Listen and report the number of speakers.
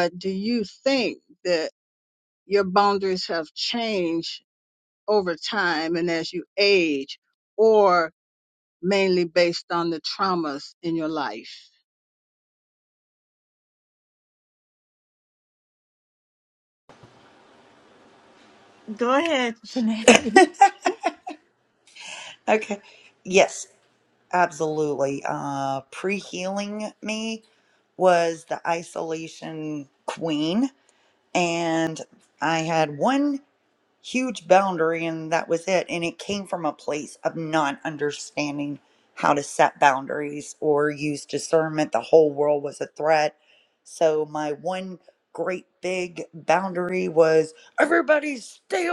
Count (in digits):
3